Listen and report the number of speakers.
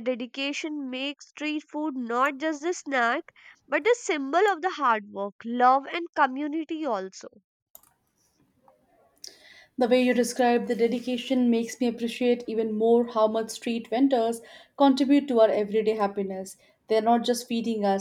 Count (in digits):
2